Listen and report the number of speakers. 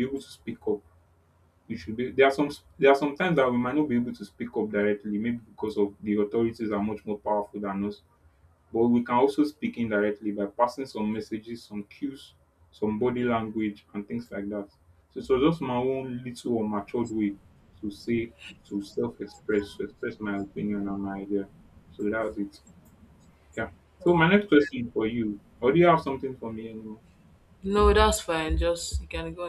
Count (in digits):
2